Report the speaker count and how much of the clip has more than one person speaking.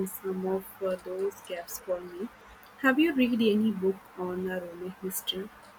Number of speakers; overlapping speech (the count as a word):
one, no overlap